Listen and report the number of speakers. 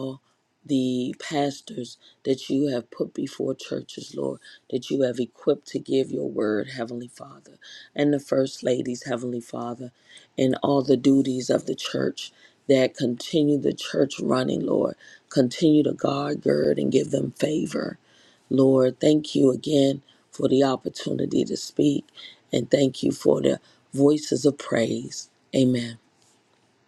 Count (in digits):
1